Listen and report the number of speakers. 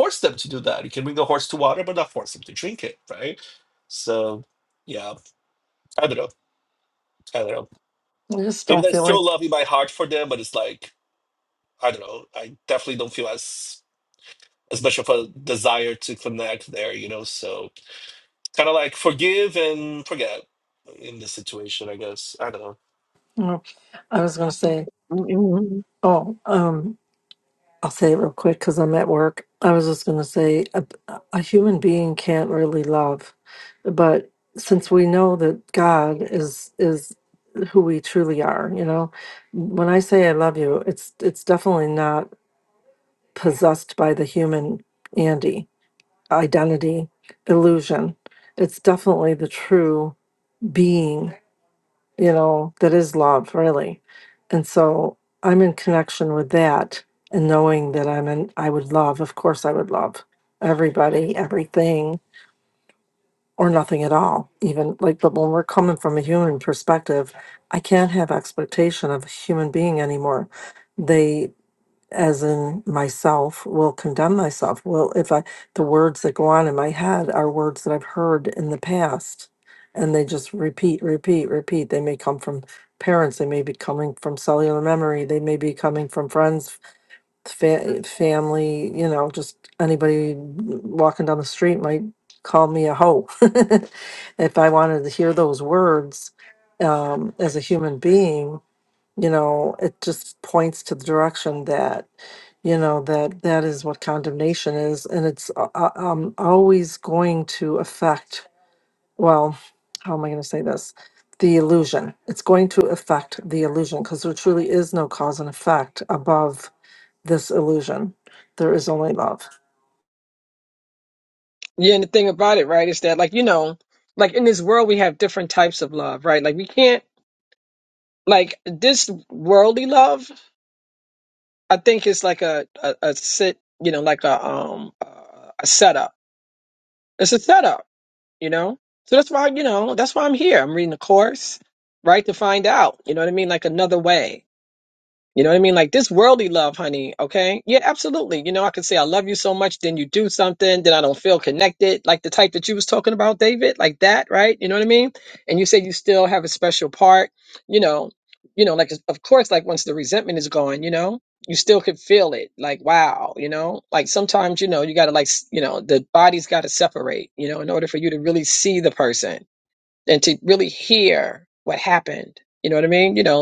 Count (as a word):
three